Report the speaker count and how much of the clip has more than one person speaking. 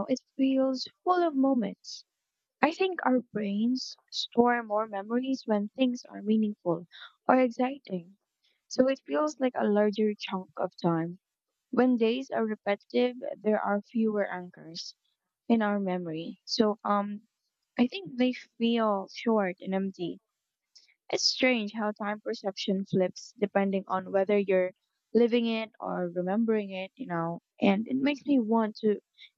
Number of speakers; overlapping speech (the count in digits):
1, no overlap